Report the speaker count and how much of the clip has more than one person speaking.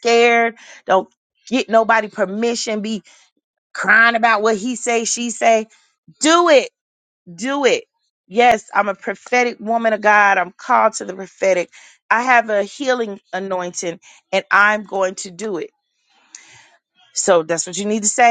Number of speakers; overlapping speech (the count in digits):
1, no overlap